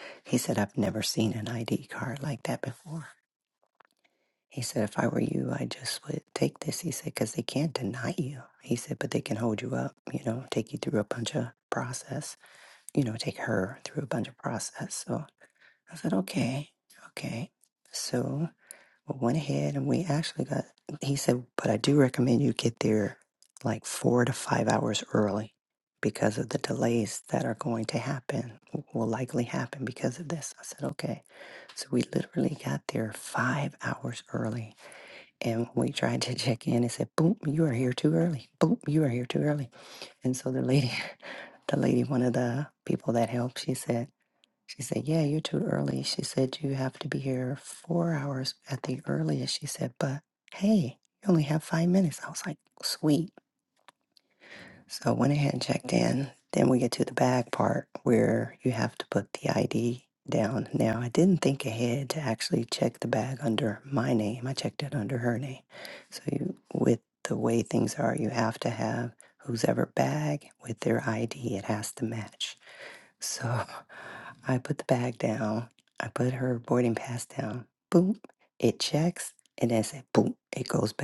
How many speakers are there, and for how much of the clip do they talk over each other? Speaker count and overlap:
1, no overlap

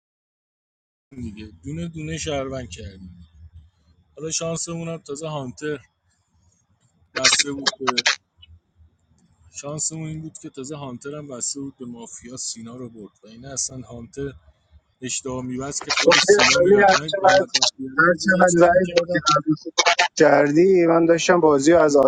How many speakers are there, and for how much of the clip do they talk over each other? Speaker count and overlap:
2, about 12%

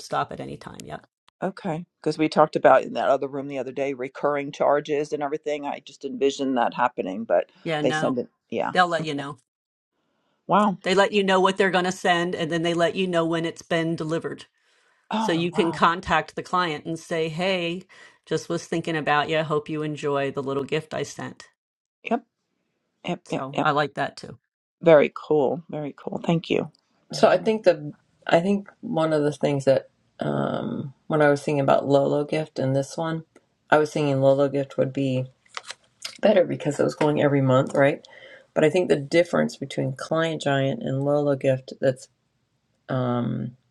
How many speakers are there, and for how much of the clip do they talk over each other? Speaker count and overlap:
3, about 3%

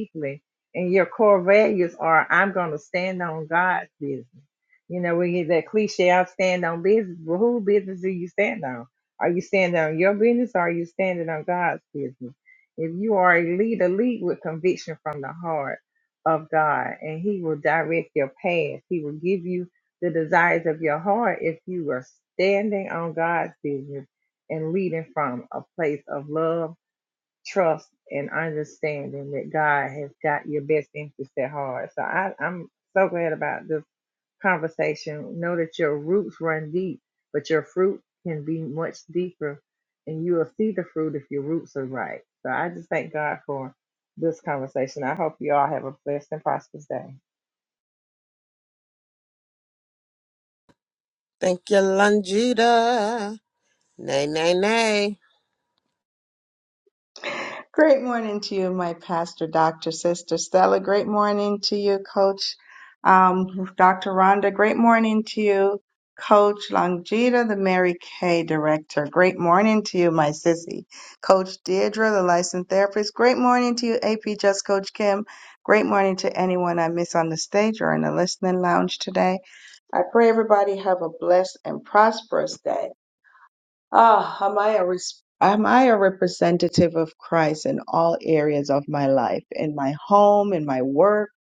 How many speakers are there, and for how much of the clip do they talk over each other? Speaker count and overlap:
3, no overlap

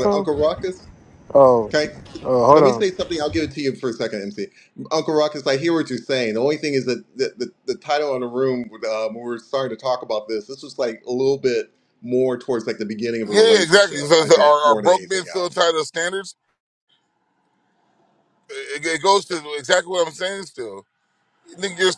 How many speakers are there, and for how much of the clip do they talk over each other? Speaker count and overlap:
3, about 12%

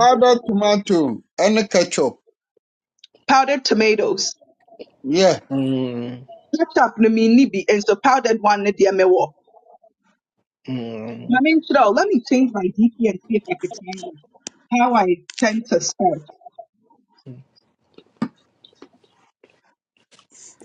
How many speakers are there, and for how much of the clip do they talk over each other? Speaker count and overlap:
3, under 1%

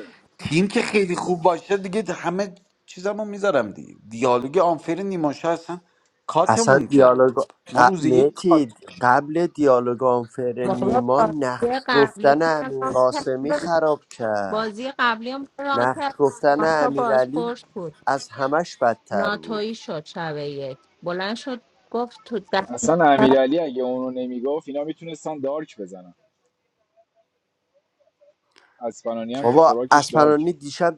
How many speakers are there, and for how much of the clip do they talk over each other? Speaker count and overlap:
4, about 23%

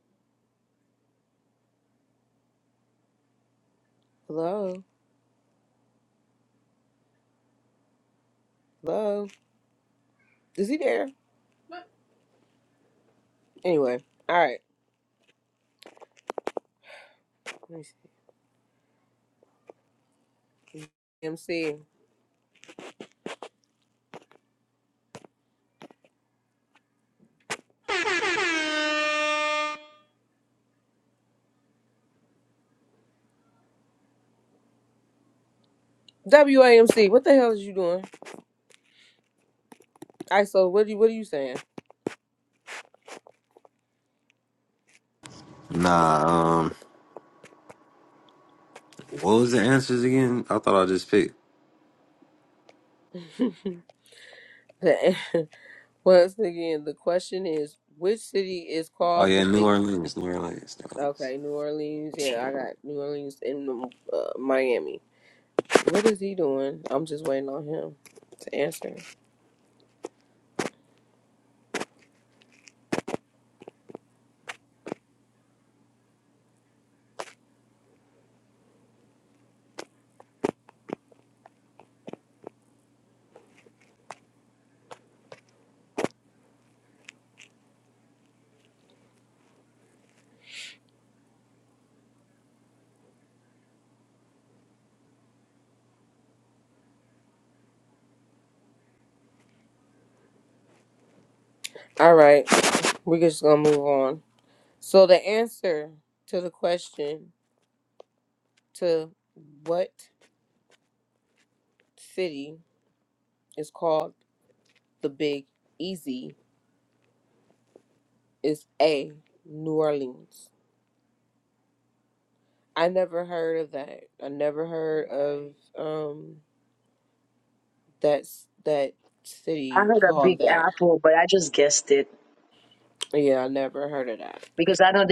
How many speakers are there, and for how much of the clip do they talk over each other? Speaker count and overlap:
3, about 1%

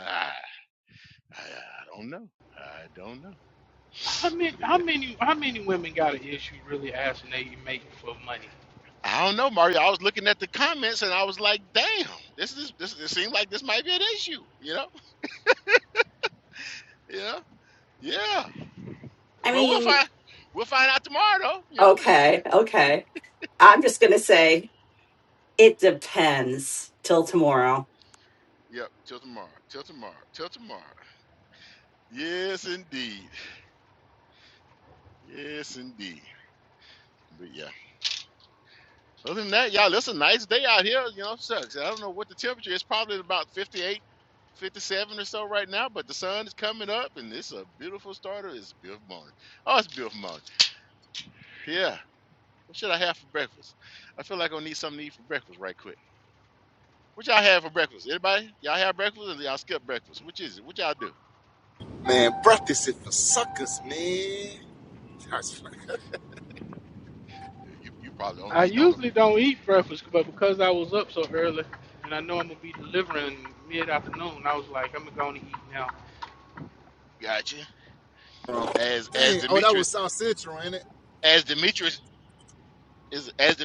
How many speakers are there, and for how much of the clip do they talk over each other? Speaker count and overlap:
4, about 3%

